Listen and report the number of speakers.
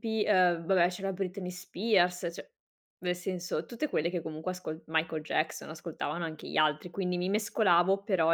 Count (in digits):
1